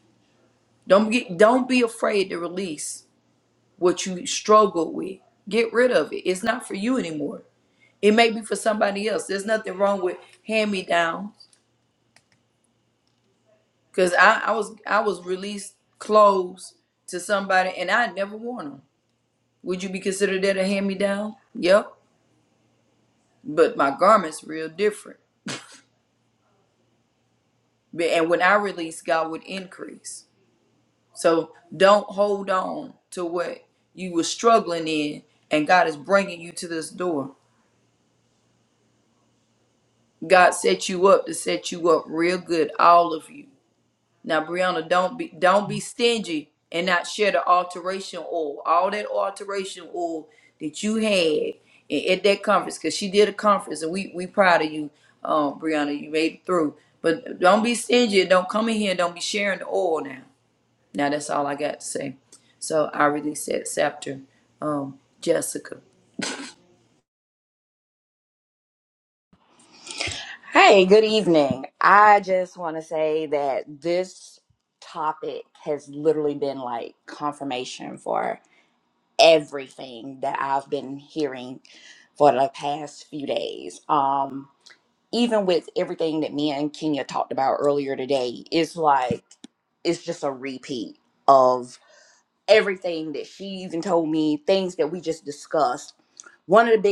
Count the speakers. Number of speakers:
two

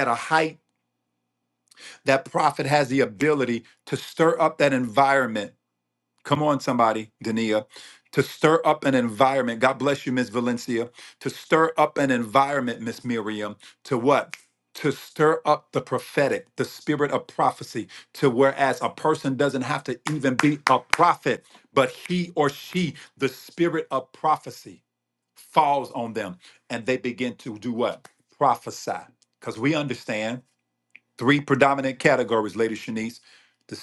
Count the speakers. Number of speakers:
one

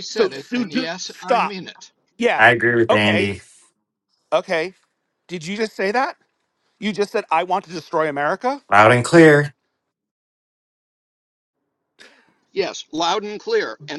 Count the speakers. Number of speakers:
three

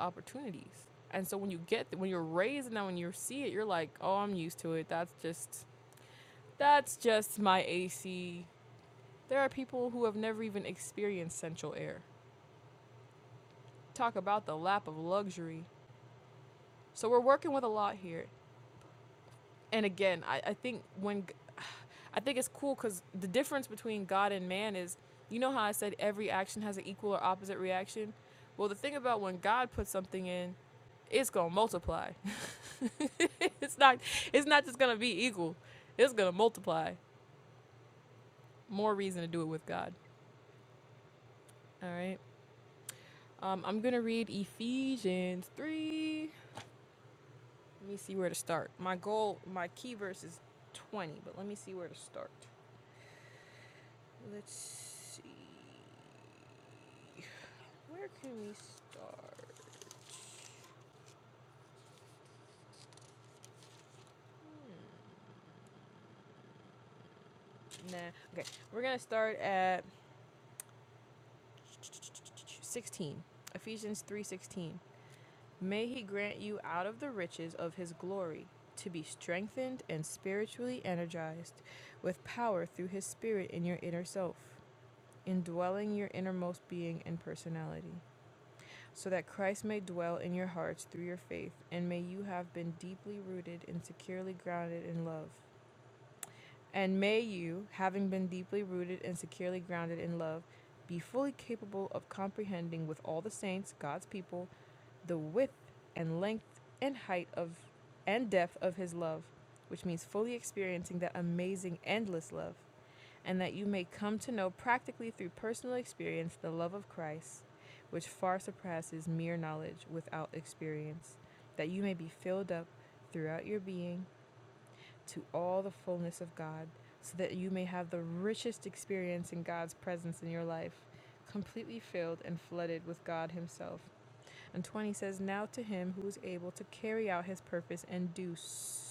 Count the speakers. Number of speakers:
one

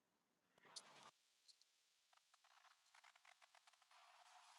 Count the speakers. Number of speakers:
zero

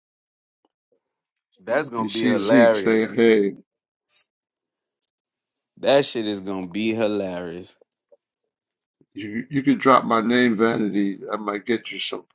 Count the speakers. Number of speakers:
two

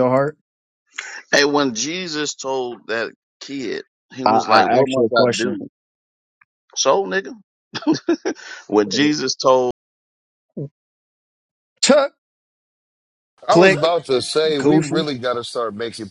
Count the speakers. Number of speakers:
three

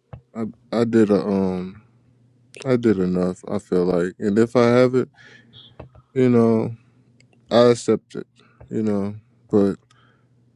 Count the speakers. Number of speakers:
one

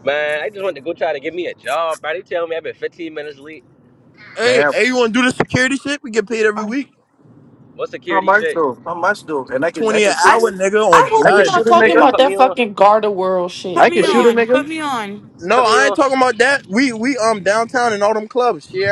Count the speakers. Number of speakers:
five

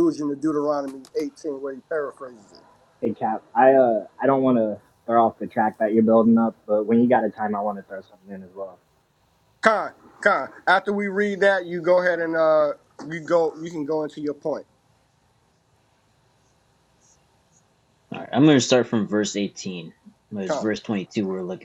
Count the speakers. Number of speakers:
three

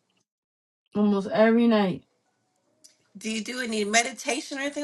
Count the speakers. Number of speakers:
two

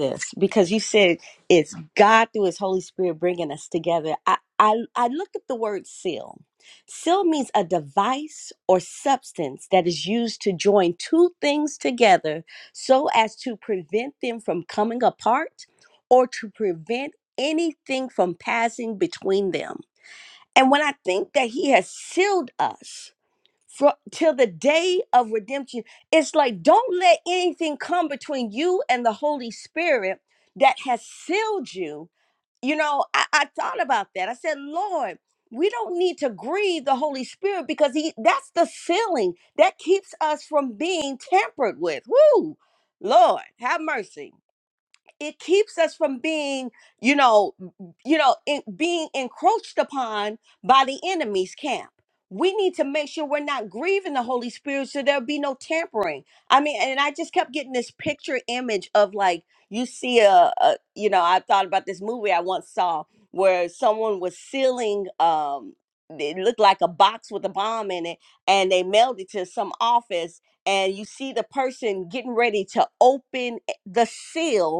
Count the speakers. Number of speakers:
one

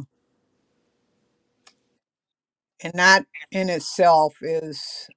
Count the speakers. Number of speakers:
one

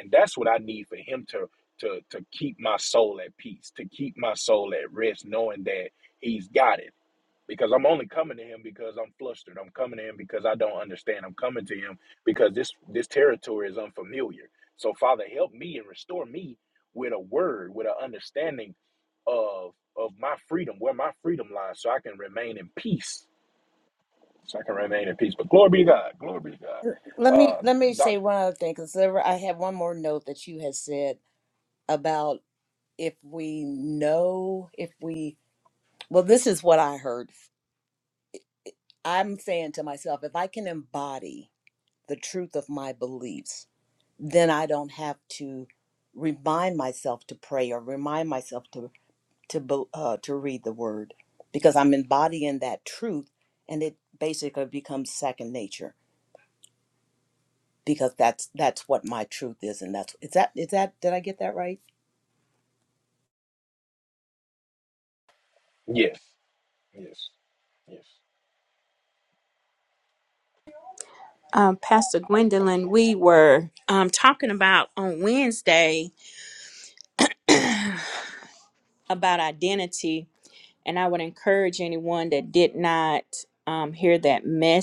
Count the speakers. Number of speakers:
three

